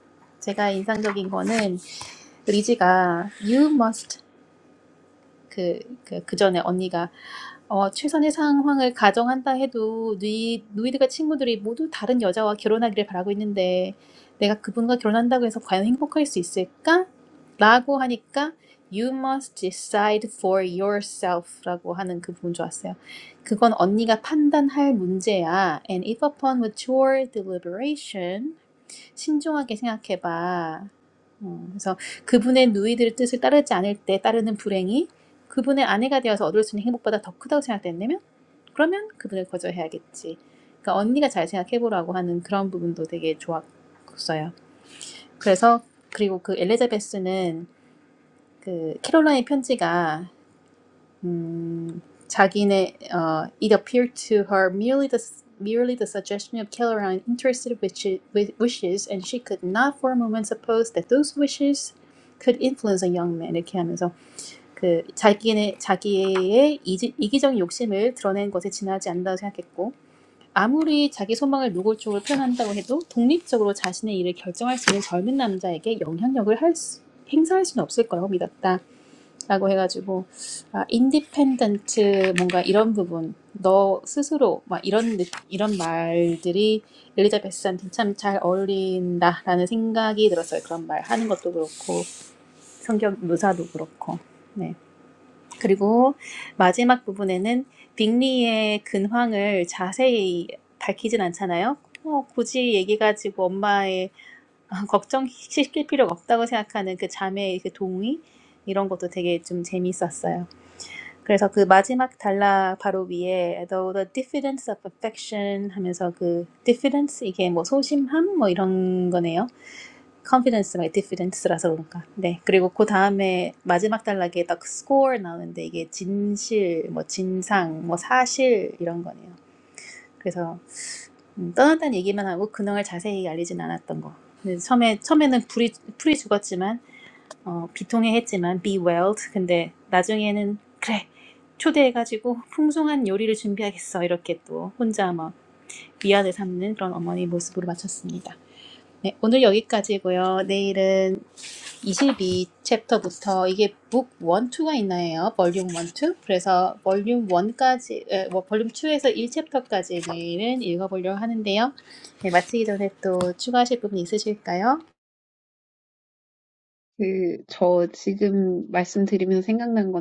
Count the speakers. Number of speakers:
two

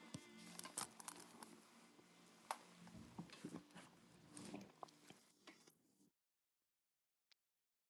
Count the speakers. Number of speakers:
zero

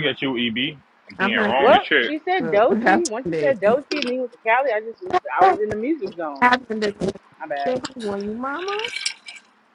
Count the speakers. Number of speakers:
three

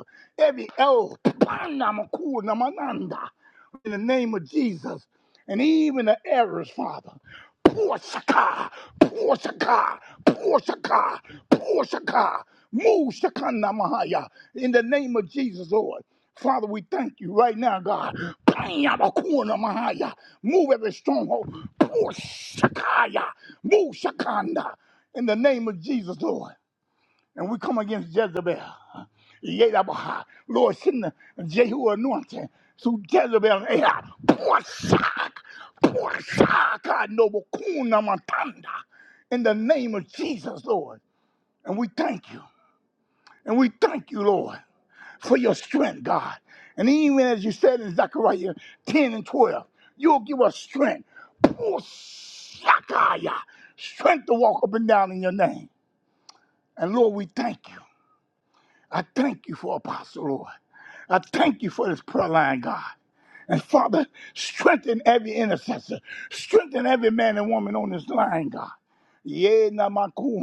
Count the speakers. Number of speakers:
one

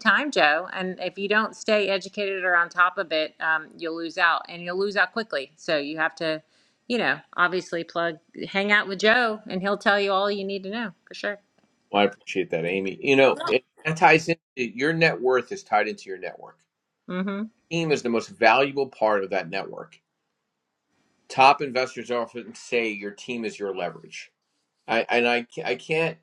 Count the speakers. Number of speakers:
two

